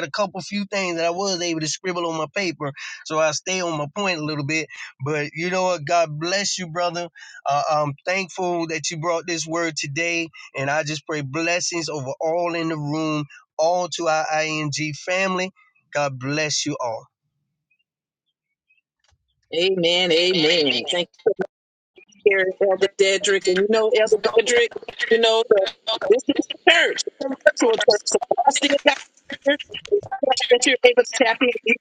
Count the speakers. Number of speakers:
two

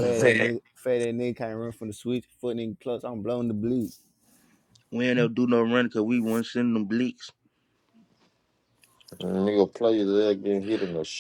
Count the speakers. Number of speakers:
three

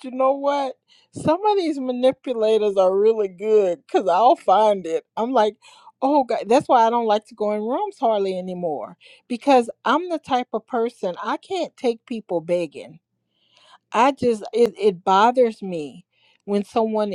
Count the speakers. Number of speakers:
one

